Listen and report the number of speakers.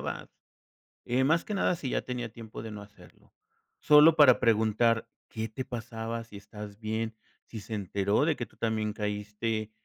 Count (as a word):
one